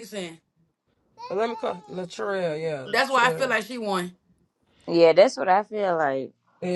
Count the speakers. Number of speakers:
three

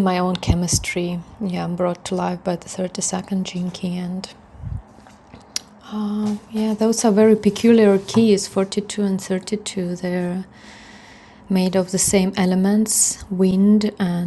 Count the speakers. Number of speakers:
one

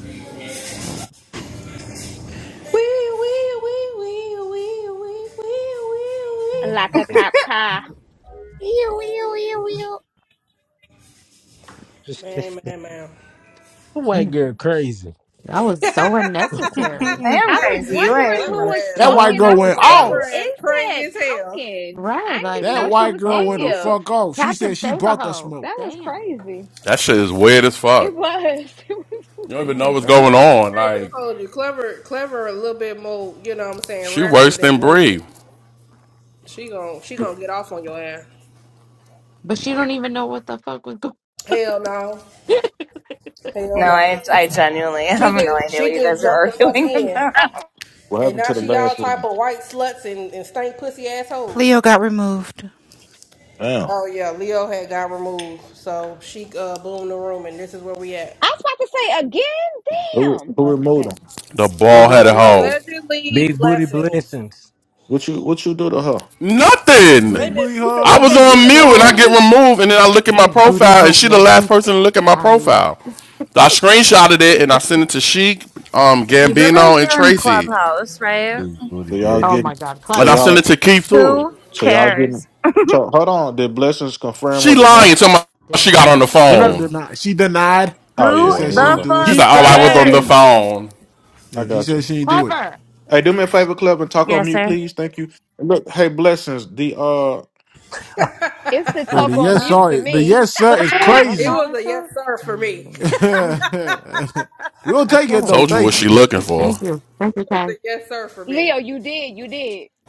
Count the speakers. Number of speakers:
nine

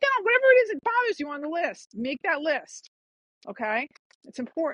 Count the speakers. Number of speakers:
one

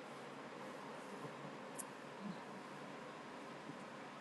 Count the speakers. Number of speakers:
zero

